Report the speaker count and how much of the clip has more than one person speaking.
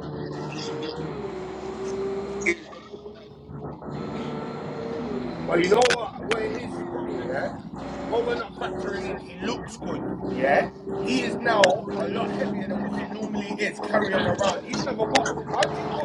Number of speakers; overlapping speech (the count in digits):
1, no overlap